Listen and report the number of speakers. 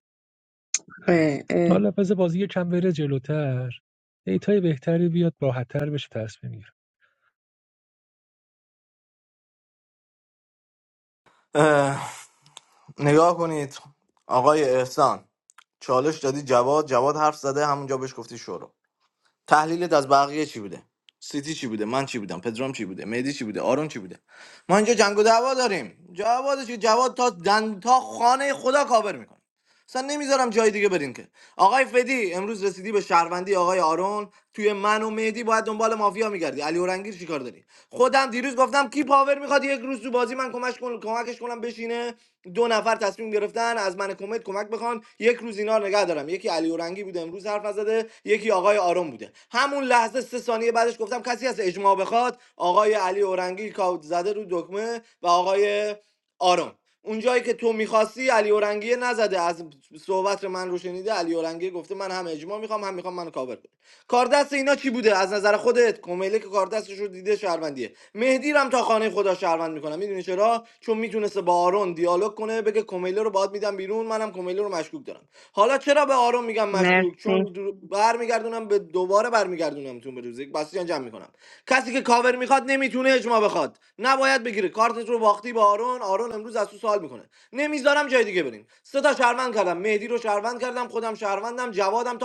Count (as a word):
three